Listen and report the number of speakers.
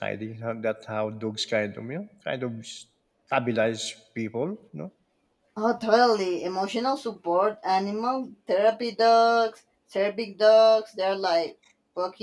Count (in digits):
2